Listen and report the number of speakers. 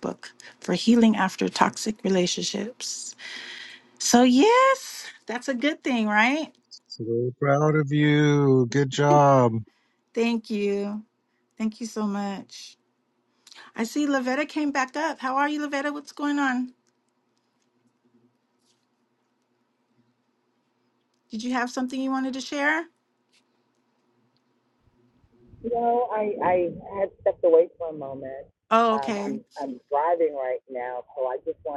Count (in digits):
3